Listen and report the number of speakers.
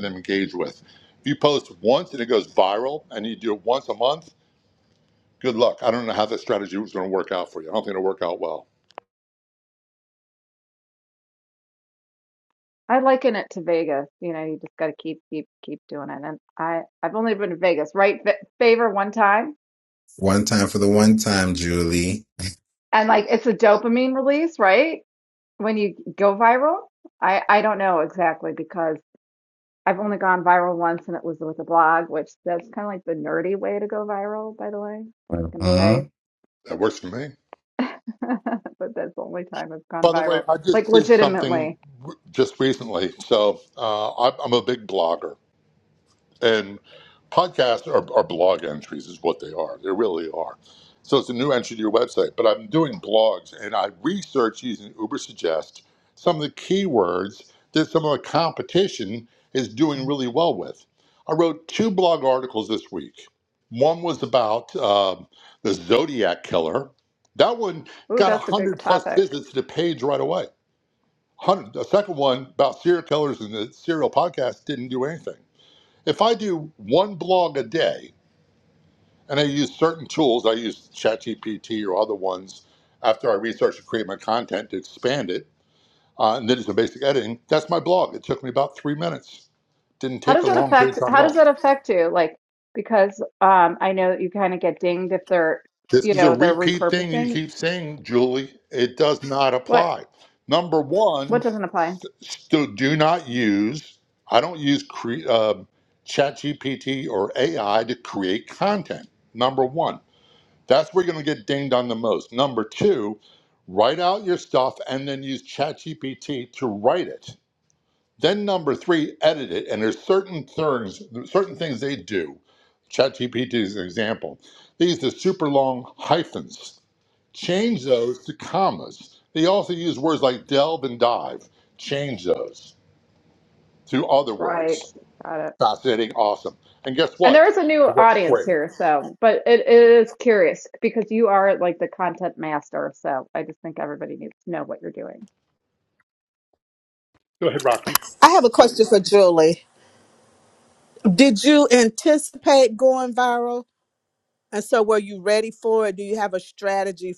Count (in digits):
4